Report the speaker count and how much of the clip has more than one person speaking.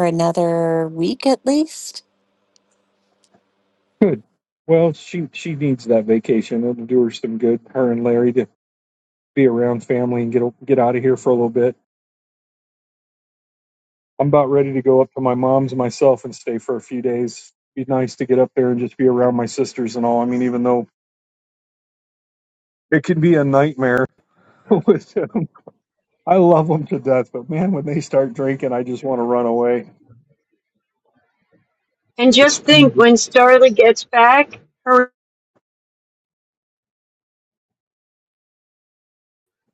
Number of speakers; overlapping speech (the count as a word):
three, about 2%